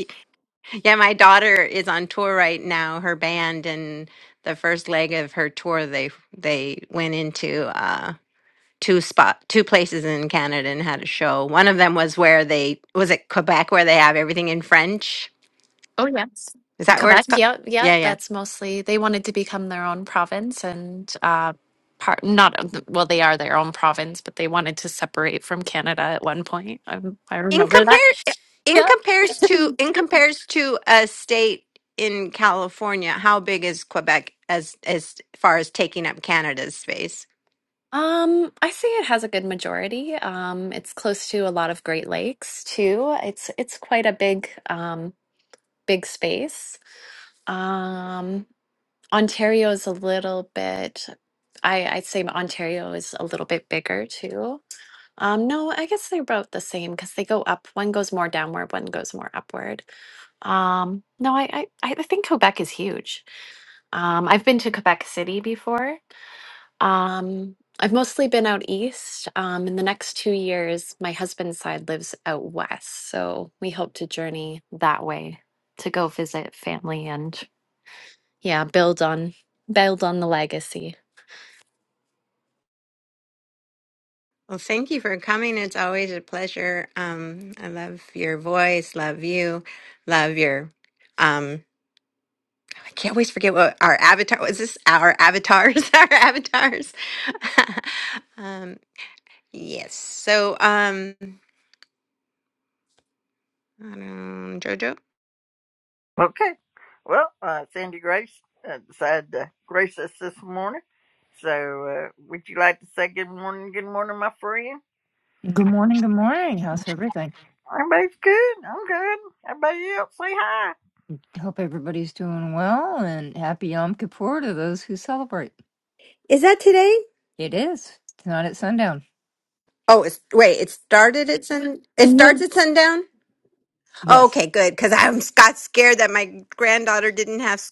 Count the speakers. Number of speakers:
four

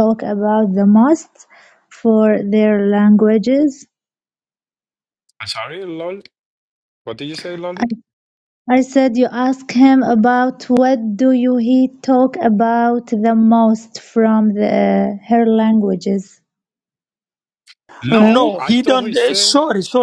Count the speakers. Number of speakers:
three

